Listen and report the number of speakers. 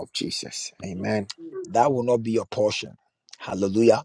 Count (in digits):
2